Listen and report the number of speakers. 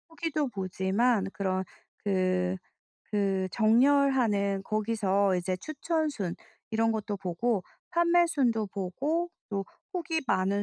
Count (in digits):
1